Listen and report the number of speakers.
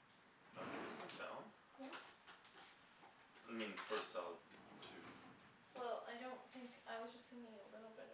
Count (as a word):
two